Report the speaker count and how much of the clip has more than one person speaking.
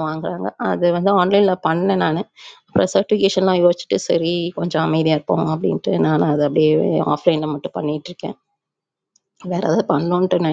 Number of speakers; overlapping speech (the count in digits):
1, no overlap